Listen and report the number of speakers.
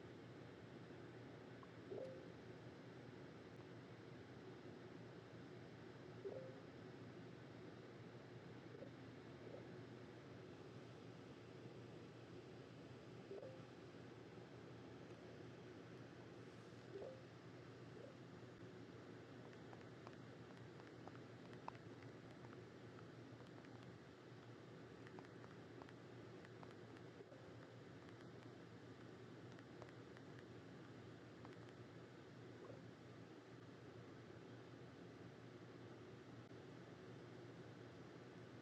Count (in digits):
0